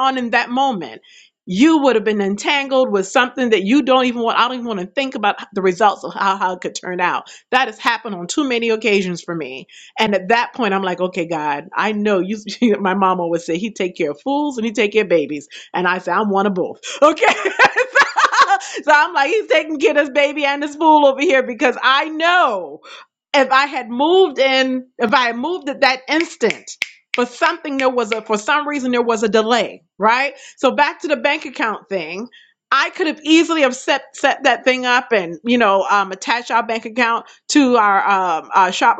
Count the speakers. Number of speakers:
1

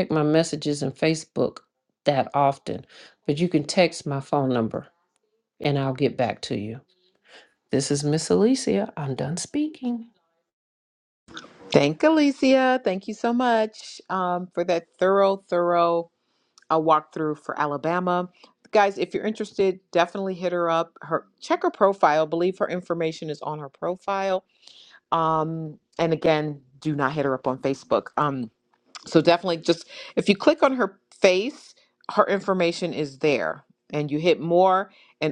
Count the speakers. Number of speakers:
2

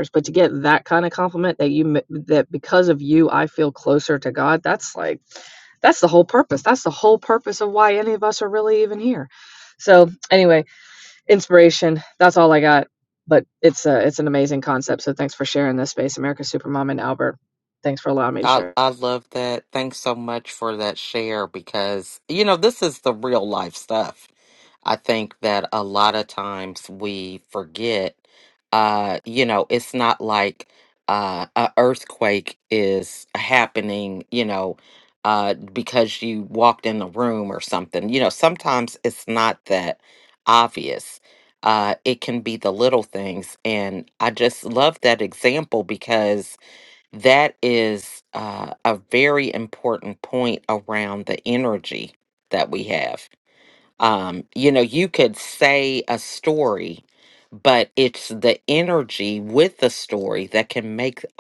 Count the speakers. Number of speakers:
2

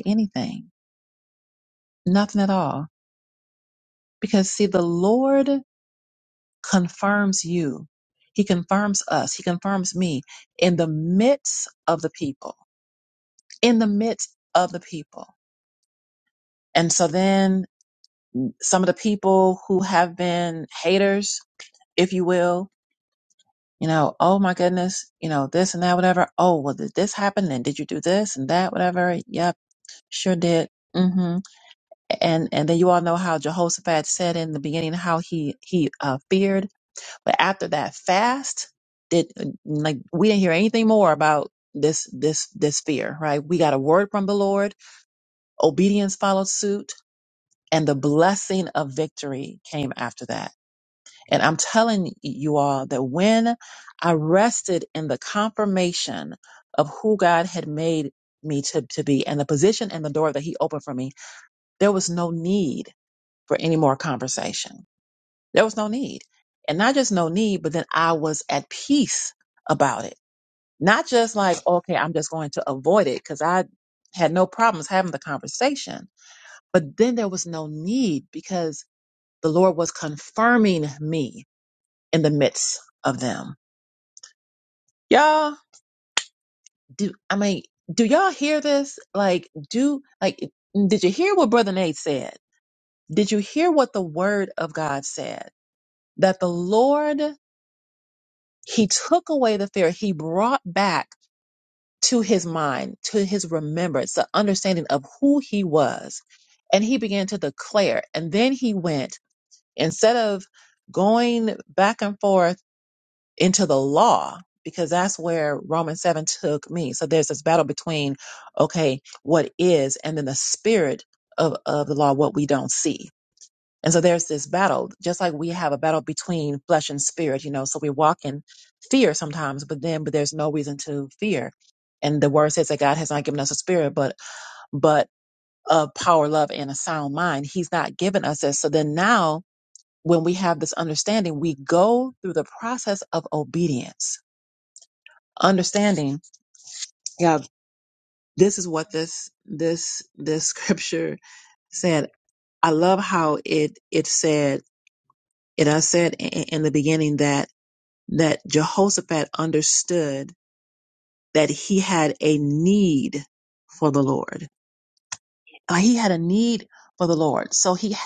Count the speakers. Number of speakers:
1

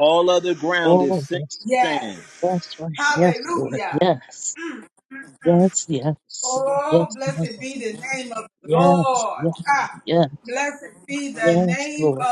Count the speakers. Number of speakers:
3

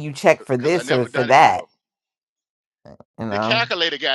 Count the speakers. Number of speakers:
2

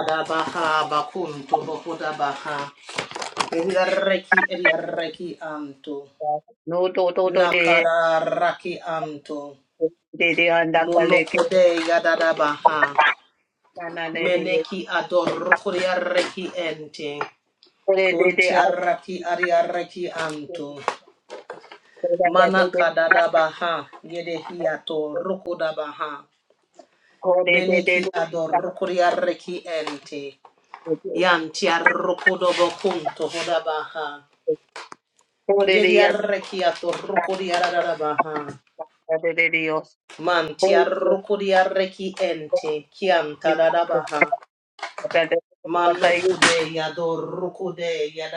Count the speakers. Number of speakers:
2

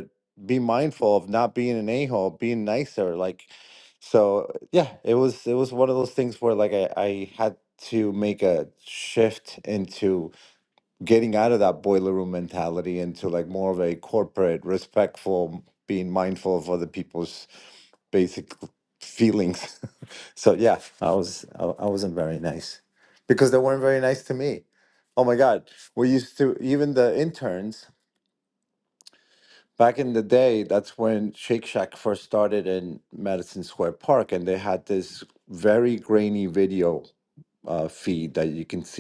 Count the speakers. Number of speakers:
1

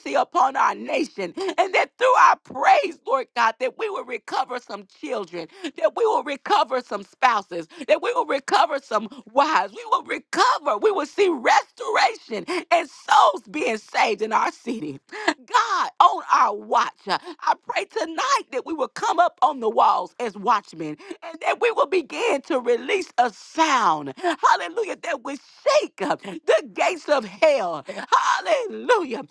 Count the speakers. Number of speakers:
1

